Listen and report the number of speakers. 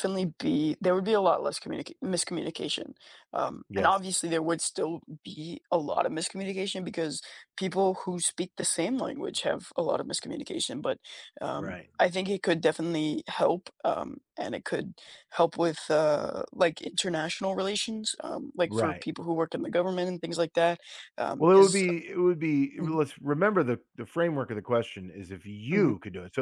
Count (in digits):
2